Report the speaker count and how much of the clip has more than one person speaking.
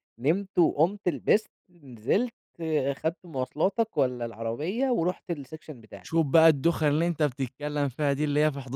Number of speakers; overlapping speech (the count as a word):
two, no overlap